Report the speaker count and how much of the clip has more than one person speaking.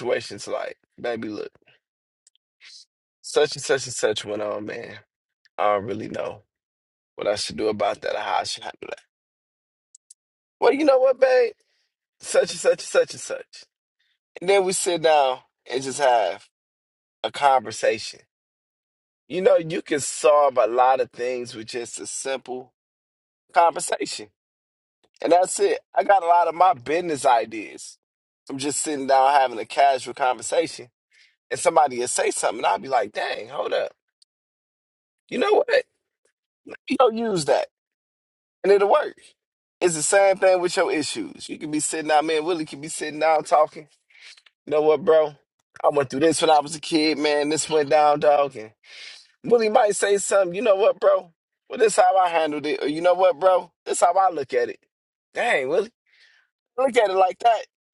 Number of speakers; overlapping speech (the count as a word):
one, no overlap